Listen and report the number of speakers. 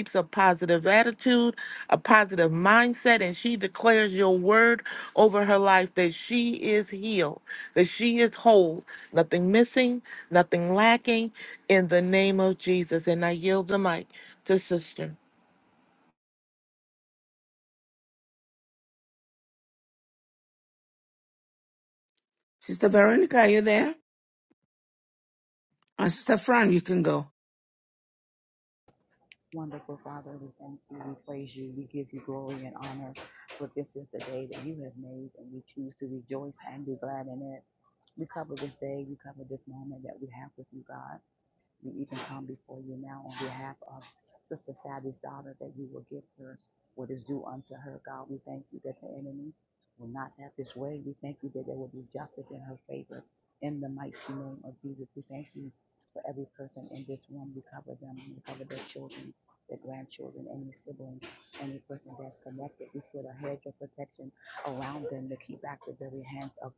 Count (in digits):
3